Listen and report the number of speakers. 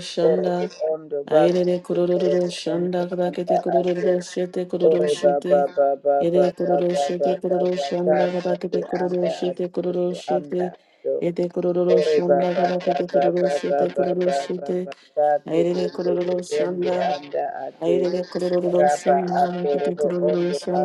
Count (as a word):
two